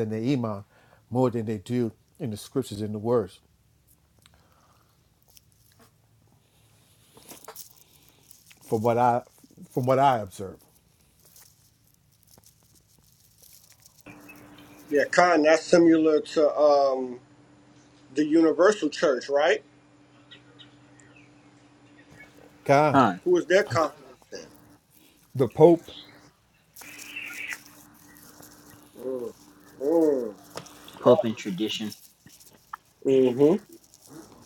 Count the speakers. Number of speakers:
three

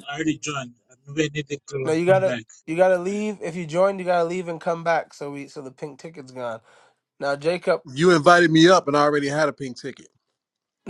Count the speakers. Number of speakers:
three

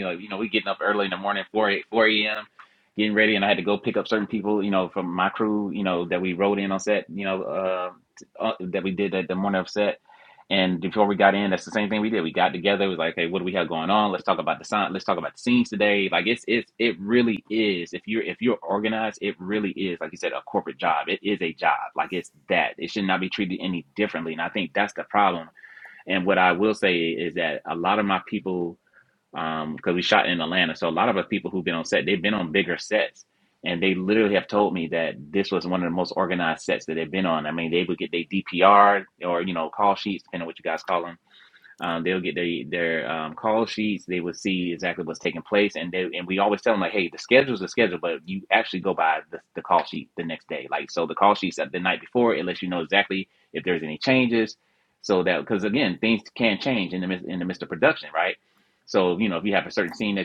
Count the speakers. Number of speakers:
one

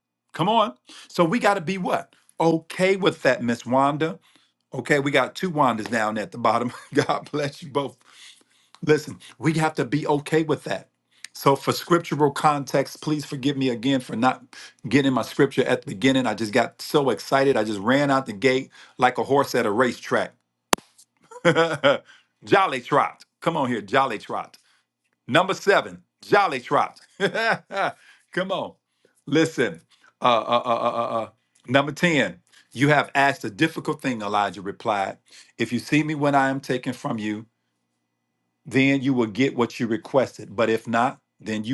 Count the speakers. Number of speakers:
one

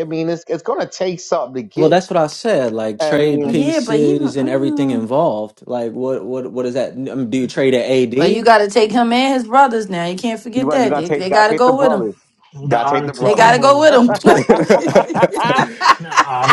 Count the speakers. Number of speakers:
four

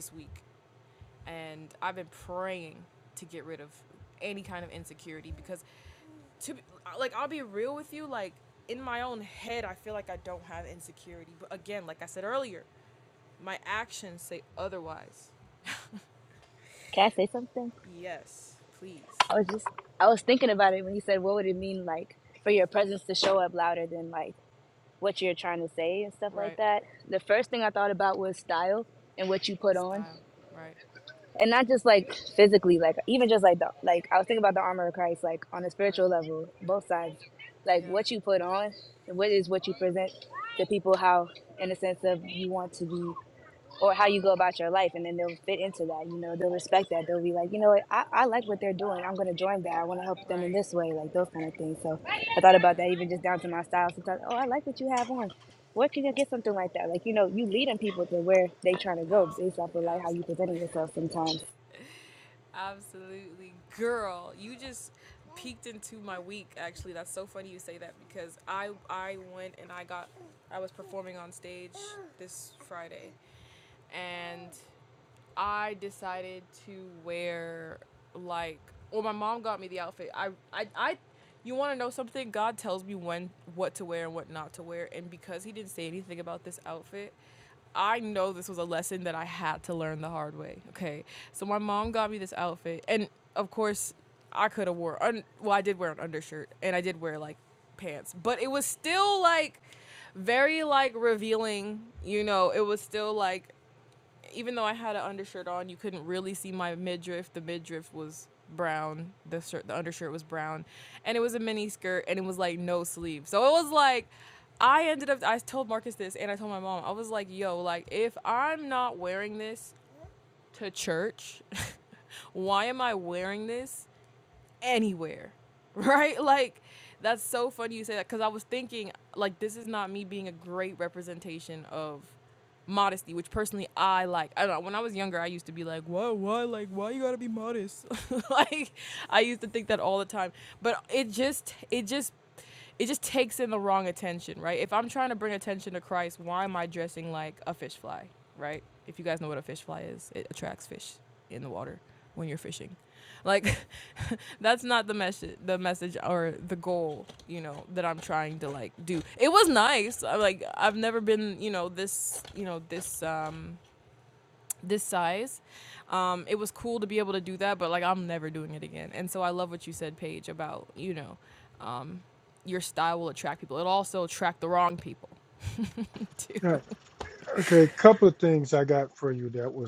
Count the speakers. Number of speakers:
three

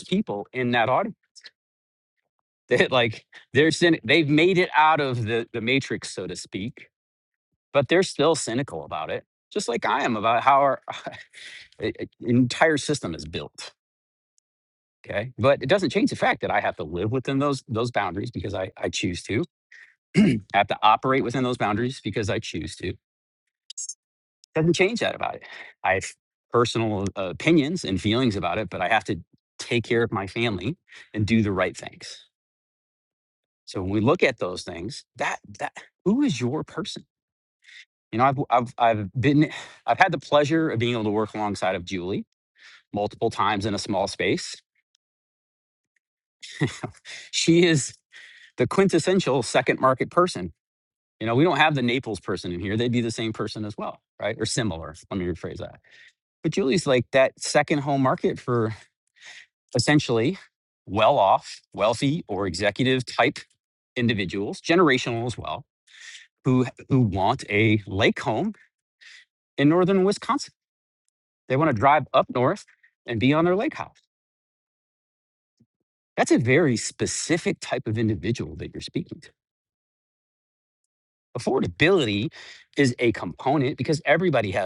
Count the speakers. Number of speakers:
one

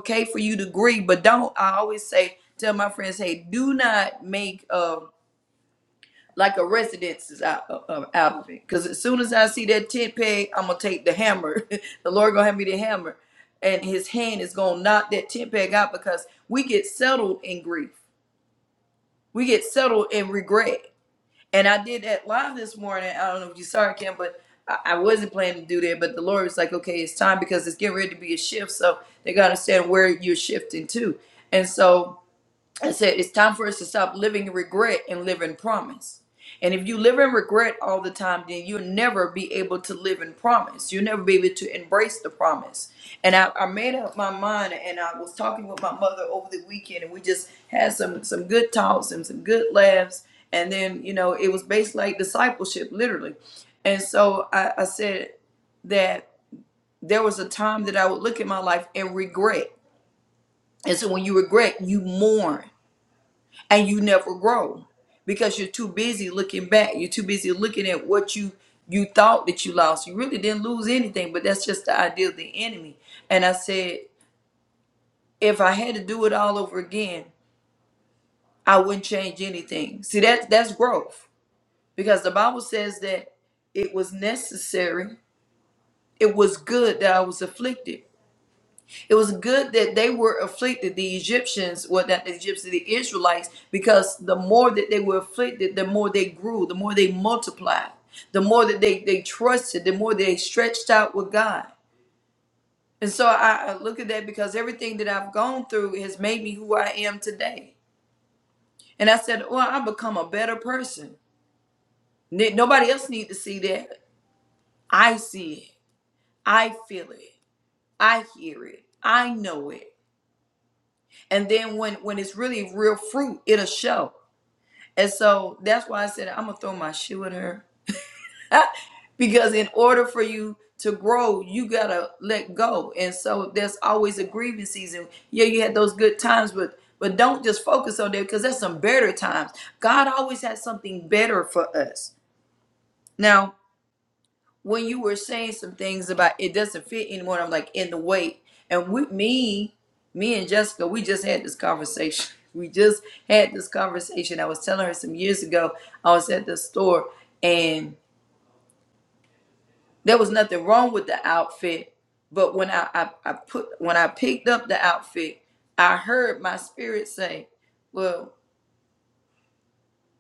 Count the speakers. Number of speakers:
one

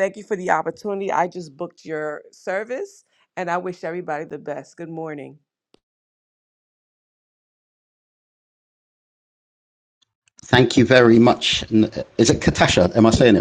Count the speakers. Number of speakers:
two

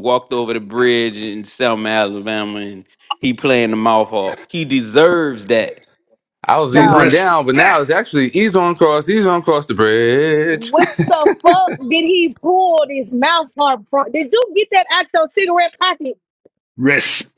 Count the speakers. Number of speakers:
four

